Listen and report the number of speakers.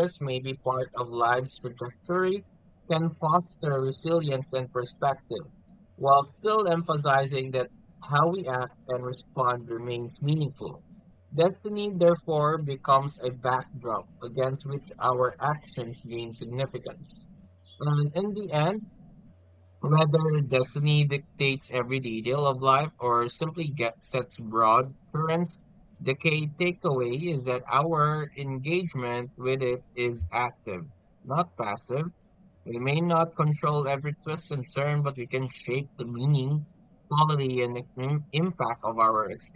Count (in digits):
1